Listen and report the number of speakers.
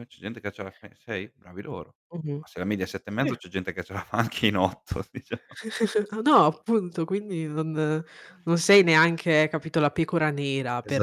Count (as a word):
two